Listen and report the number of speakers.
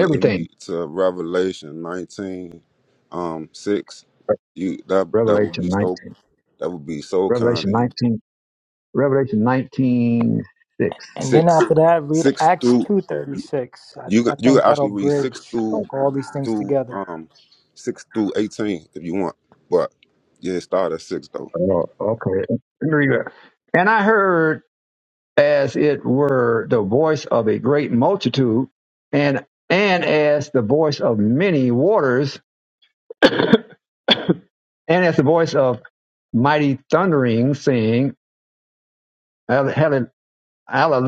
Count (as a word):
three